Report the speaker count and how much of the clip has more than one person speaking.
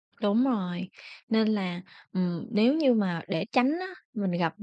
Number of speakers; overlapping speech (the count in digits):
1, no overlap